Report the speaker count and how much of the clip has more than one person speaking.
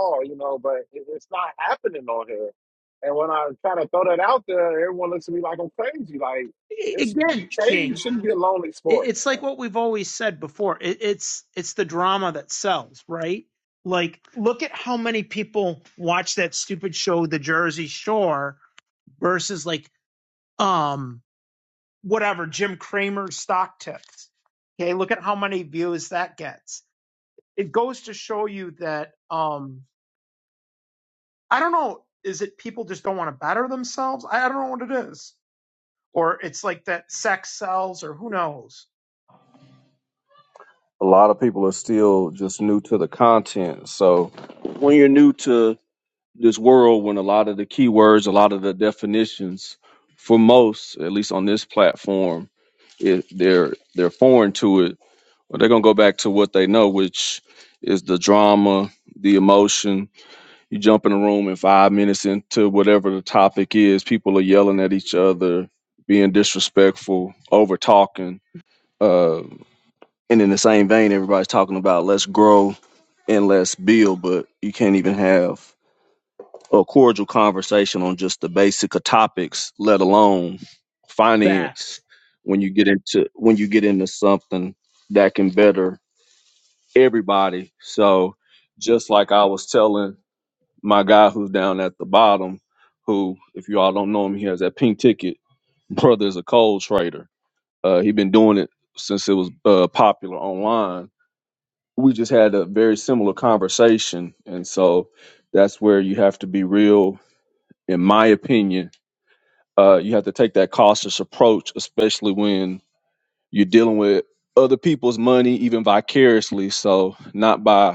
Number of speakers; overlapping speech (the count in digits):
3, about 1%